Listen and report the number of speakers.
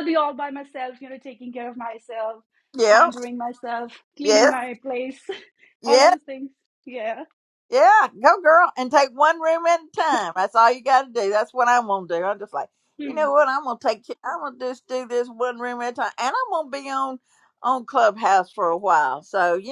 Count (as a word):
two